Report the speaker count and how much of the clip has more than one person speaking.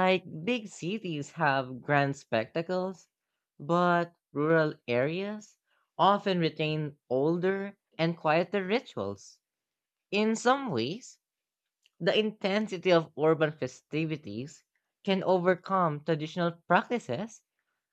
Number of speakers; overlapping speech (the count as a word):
one, no overlap